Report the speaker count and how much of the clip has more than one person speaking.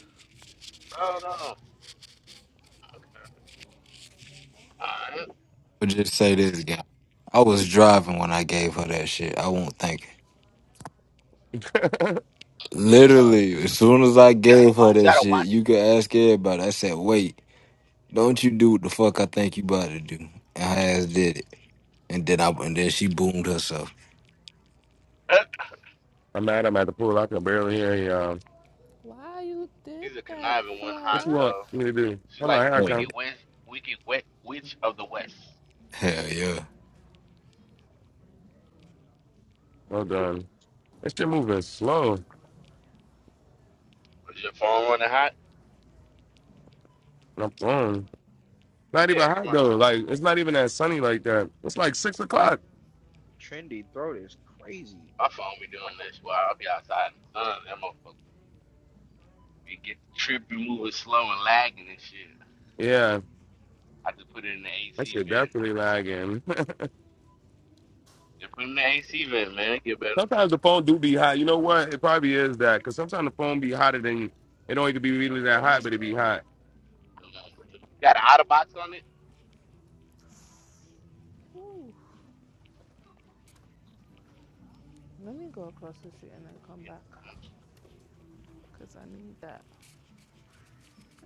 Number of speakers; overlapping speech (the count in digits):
5, about 6%